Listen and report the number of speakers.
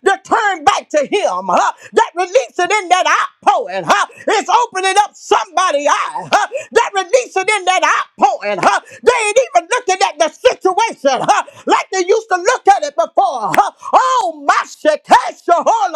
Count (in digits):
1